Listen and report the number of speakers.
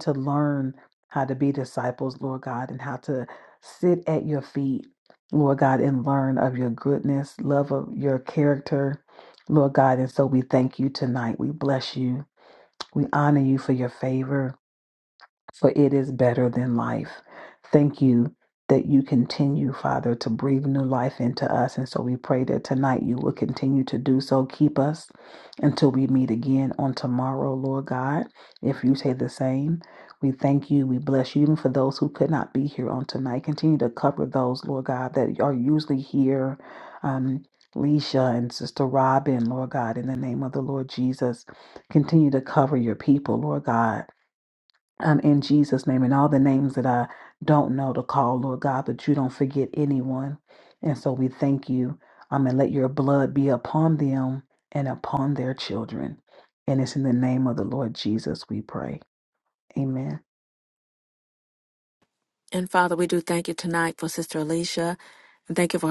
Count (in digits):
2